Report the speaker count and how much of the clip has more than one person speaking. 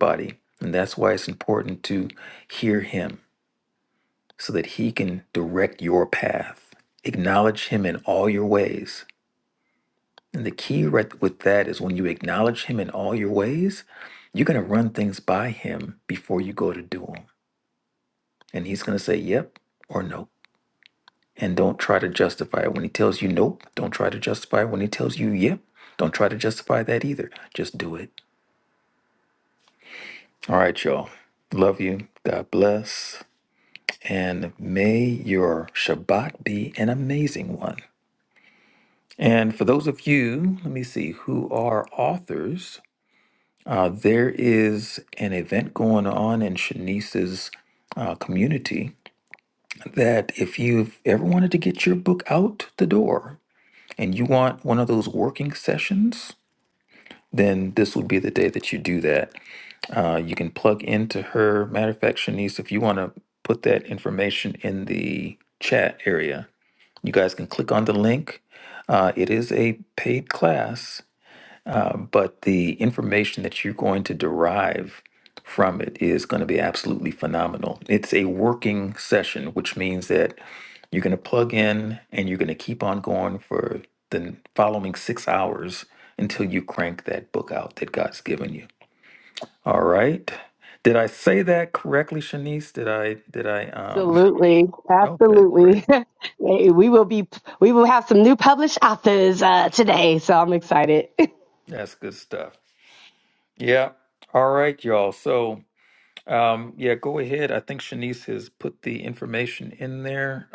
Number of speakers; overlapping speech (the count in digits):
2, about 1%